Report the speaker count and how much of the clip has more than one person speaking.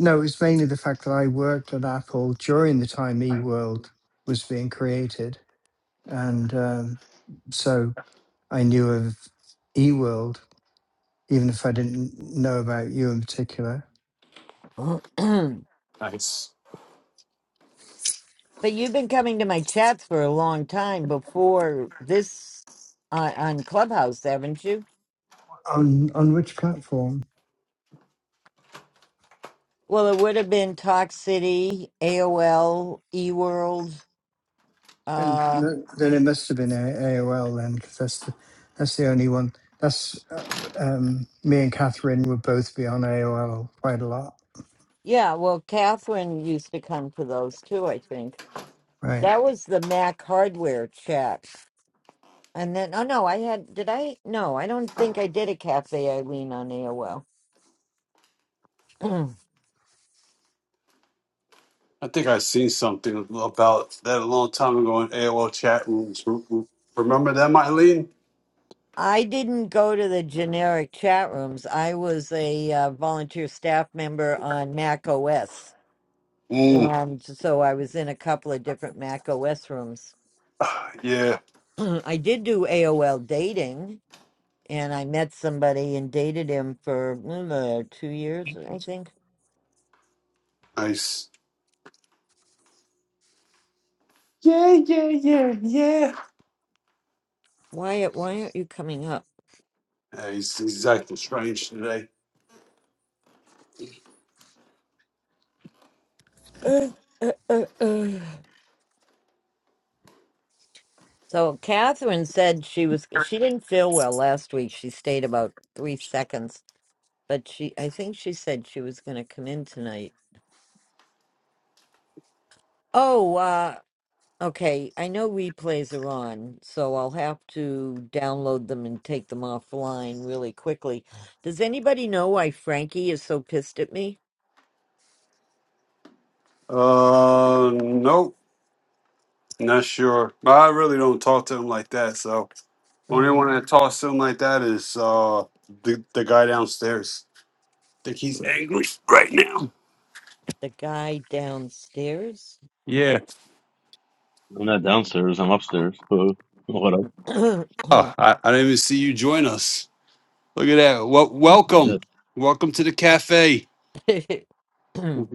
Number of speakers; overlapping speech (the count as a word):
four, about 1%